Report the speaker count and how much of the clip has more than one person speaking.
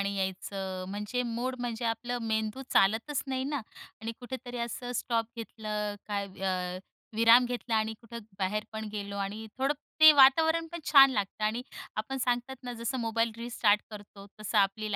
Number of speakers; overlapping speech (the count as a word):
one, no overlap